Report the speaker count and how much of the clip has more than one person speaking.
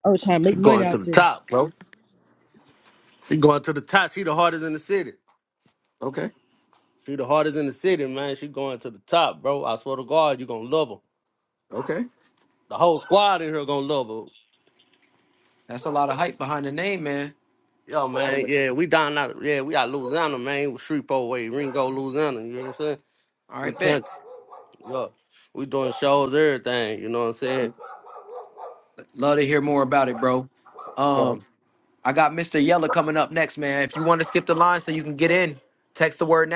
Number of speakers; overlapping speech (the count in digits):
3, about 4%